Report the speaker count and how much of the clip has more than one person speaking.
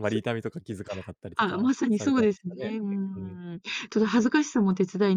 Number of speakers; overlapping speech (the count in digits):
2, about 29%